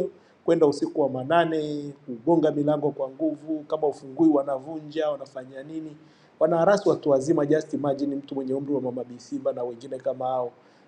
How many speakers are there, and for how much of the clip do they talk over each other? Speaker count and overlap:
1, no overlap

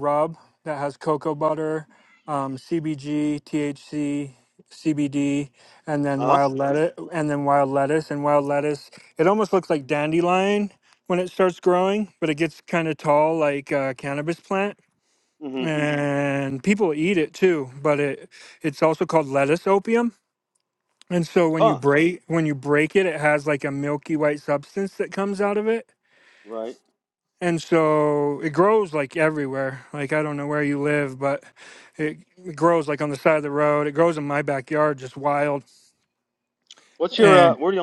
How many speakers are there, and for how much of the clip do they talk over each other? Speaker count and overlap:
2, about 2%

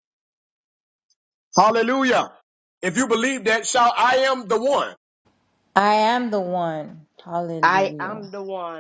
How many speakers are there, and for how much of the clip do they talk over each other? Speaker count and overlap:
3, about 7%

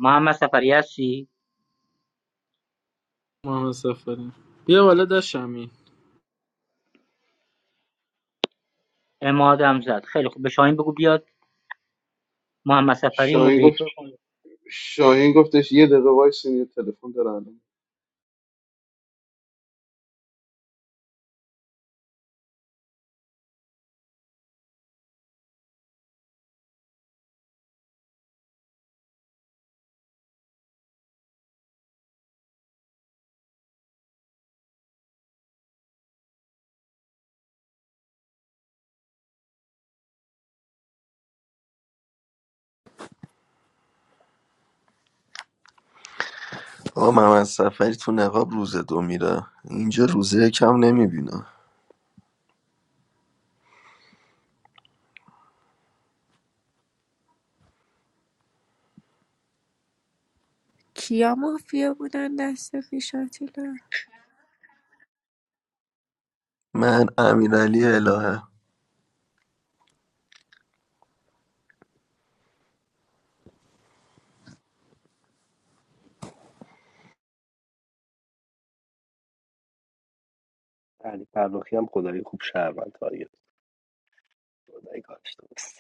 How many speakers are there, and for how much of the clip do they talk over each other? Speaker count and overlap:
6, about 1%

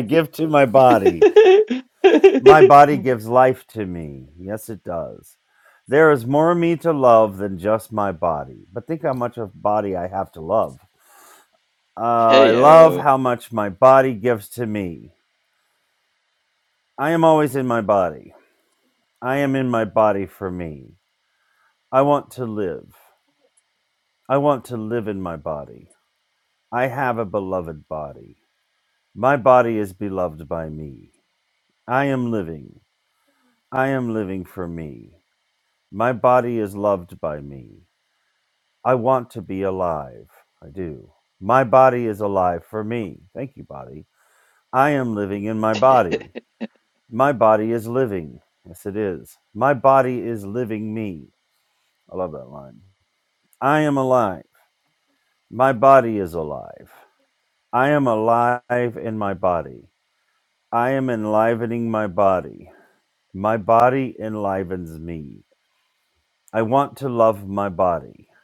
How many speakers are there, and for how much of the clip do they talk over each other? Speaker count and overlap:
2, about 2%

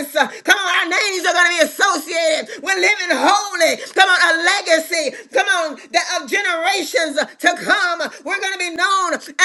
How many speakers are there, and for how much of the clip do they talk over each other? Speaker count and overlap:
1, no overlap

